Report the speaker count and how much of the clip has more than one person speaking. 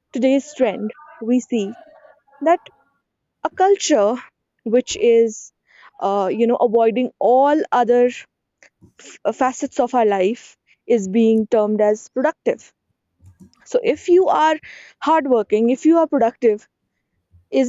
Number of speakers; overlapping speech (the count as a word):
one, no overlap